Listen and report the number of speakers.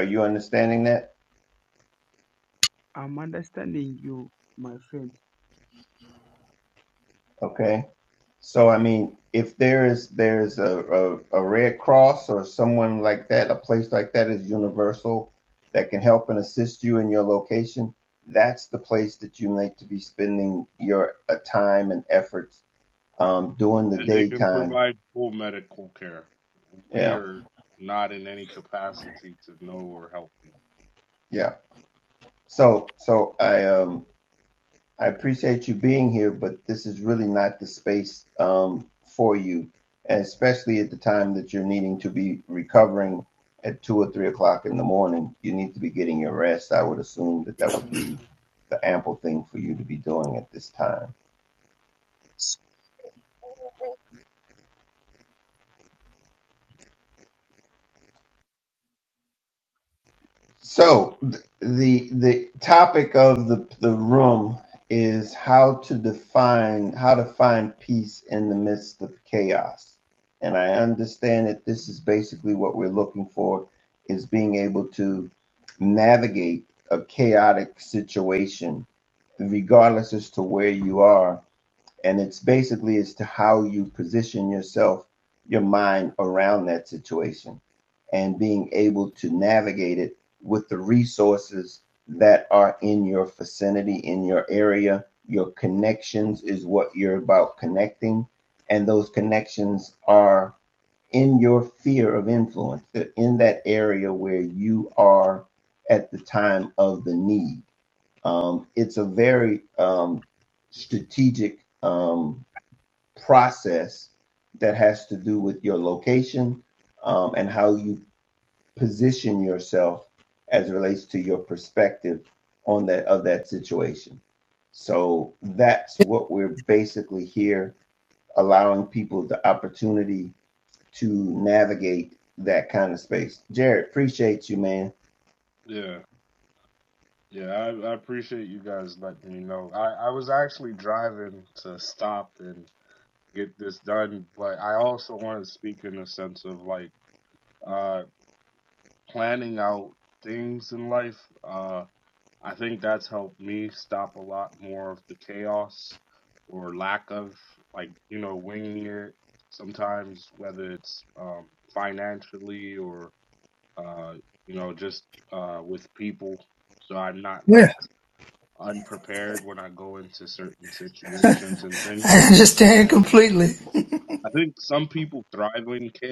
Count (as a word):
four